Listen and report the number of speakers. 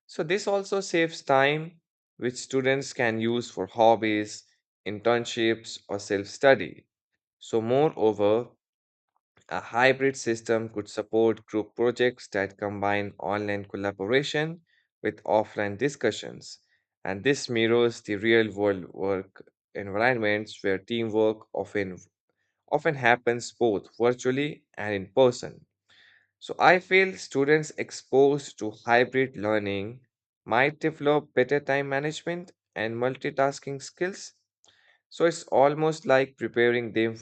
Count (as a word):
one